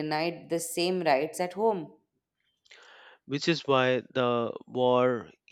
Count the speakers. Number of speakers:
two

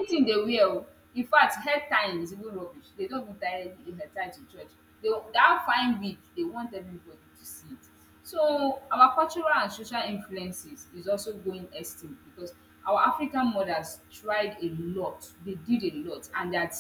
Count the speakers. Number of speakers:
one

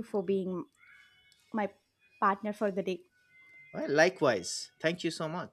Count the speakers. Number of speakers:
two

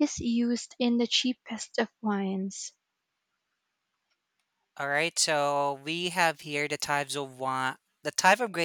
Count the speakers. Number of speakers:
two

